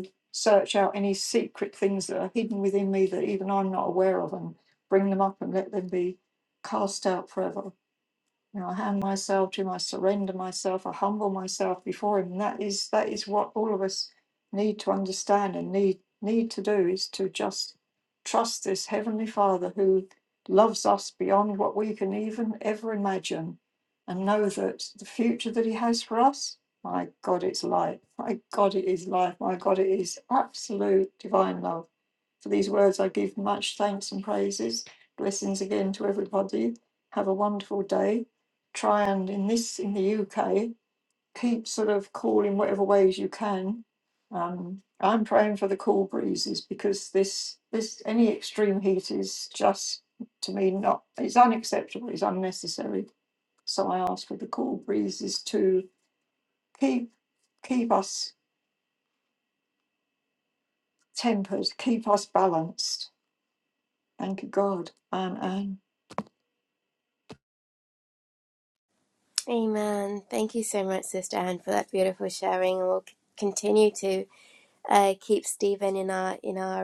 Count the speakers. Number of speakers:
two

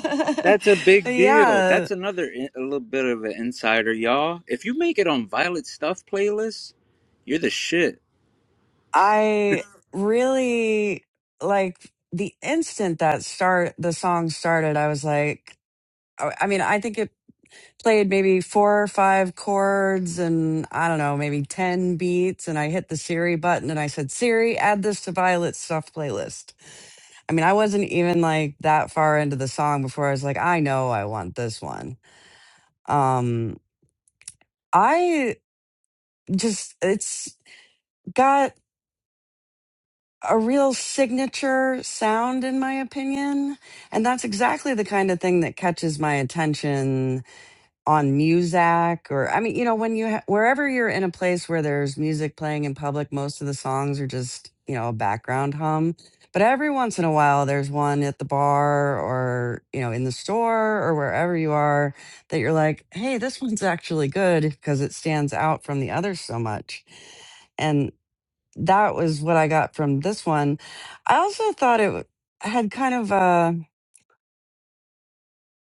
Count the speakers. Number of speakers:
two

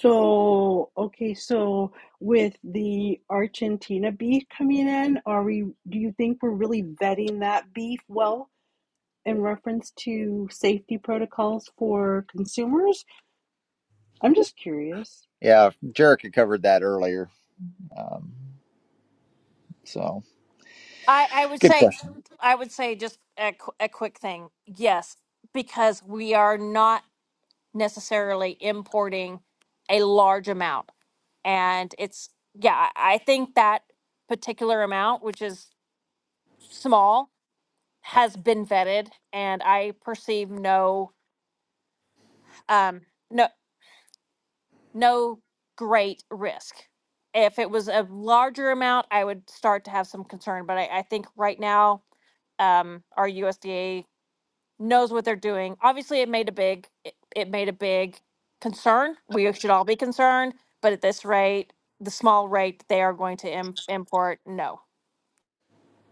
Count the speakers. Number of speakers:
three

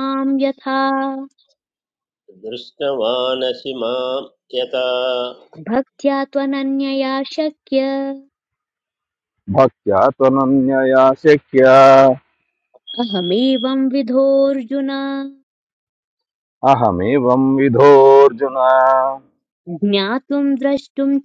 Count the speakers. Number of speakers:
three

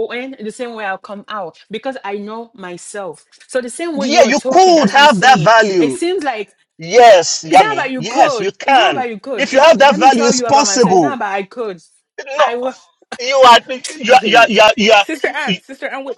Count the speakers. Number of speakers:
three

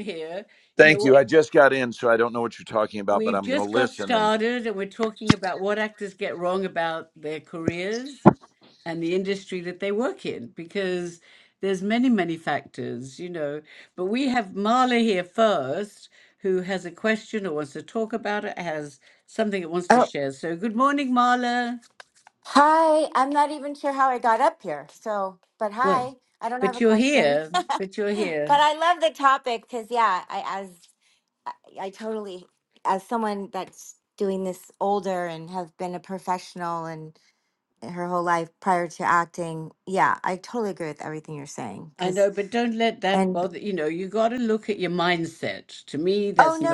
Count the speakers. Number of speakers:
three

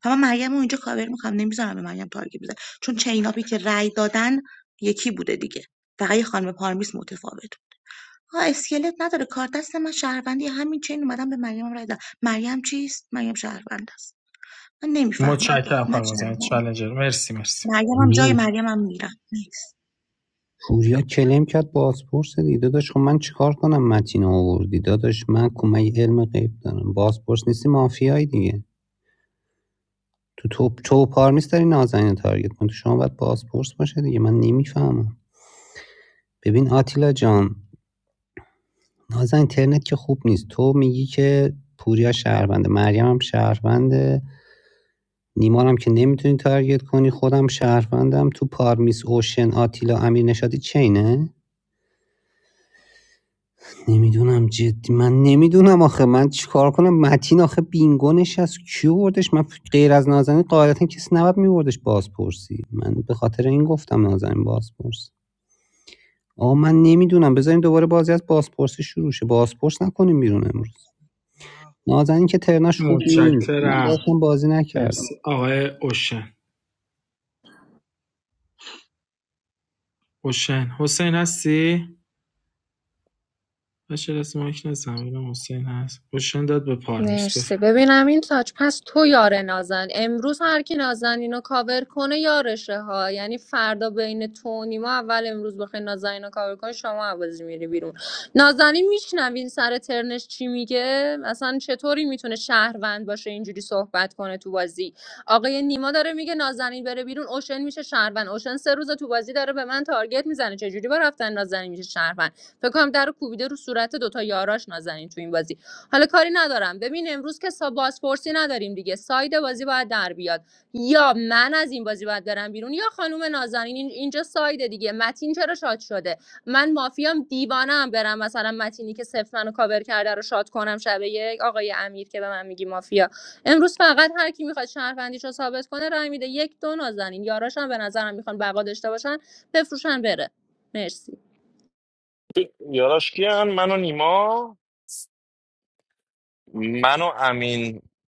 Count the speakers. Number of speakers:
five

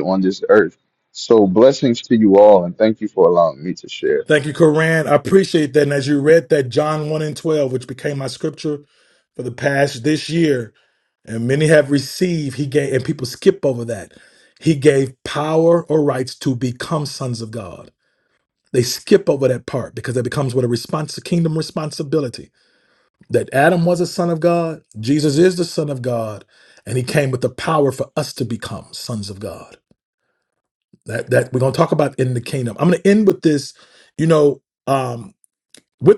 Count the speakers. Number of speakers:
two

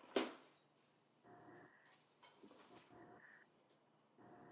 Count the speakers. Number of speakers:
zero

